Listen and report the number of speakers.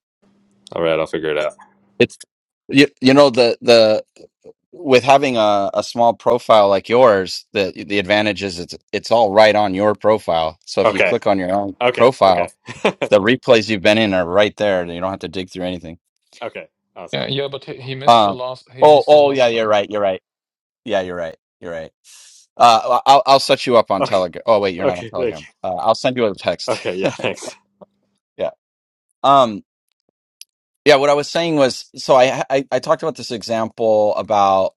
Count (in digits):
3